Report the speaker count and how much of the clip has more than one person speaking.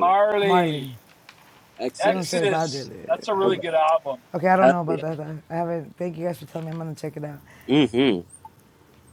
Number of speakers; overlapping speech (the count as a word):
three, about 25%